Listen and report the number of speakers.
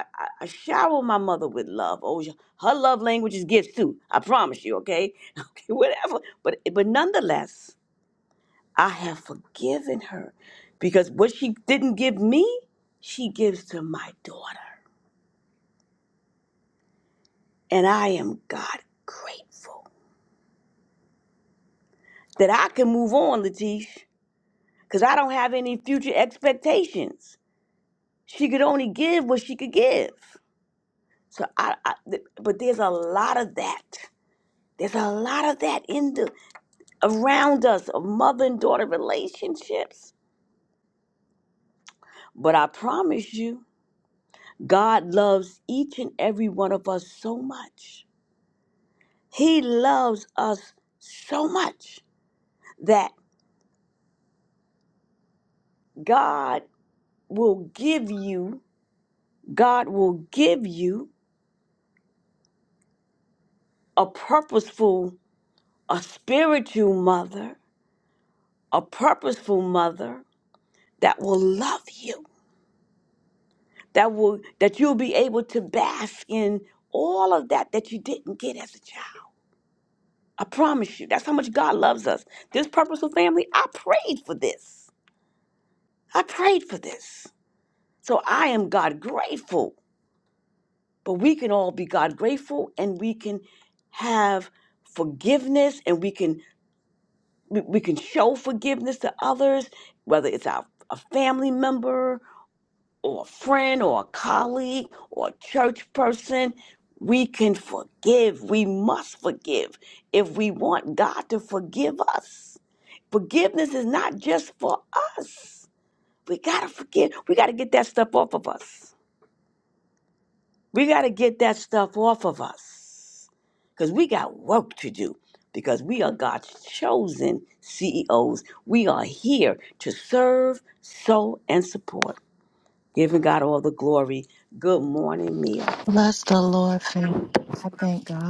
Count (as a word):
two